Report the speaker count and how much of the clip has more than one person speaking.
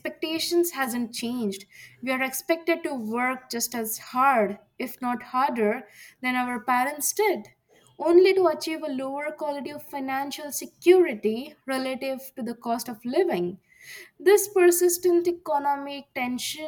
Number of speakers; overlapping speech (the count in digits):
1, no overlap